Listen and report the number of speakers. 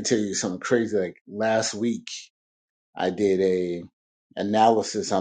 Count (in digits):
1